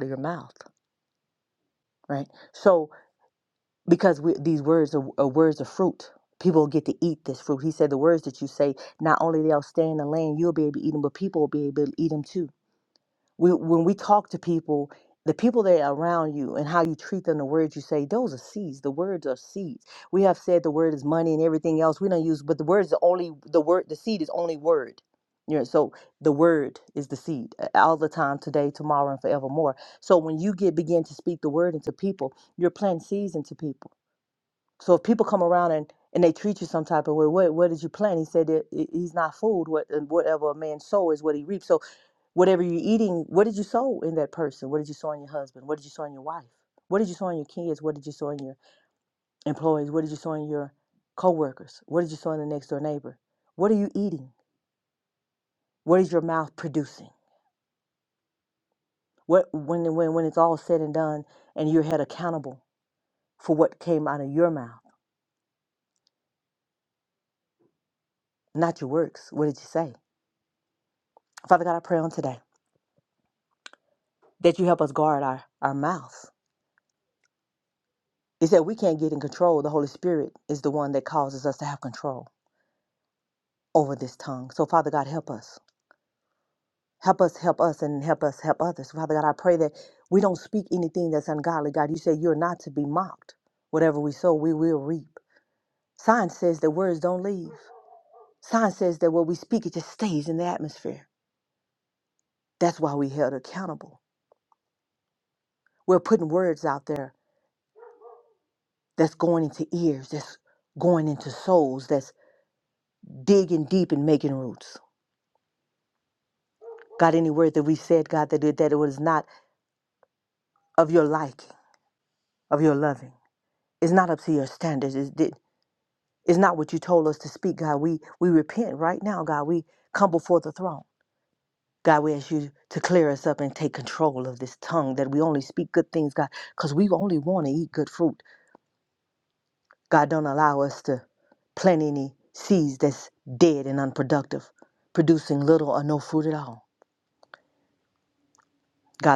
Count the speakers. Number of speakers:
1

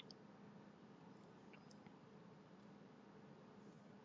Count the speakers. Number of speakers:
0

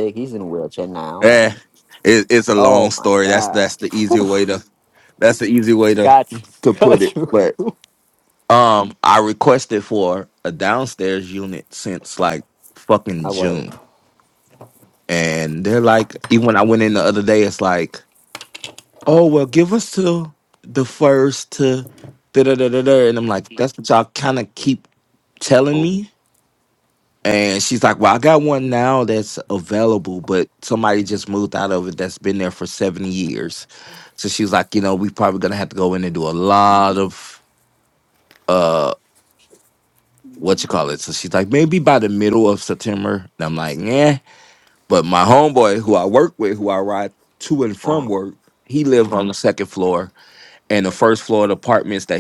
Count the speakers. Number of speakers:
2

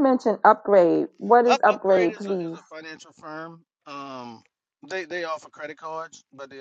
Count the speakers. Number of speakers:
2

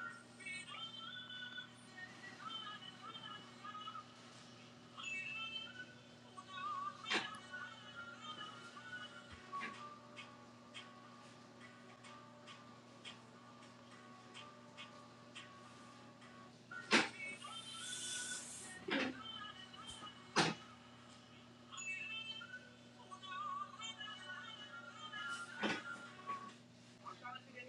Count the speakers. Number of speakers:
0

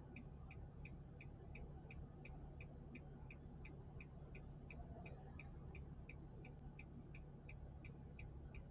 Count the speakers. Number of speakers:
0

